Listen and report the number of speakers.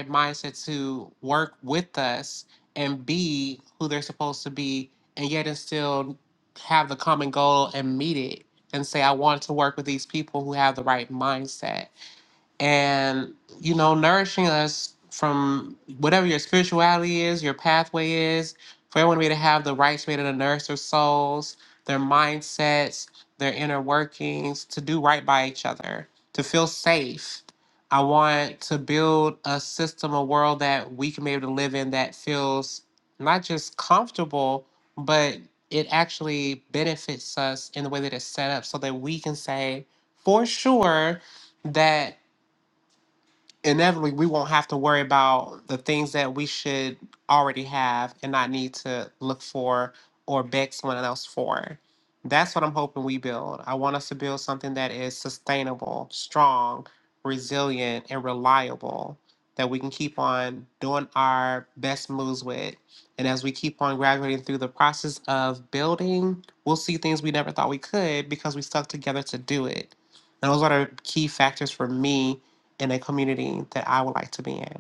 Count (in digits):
1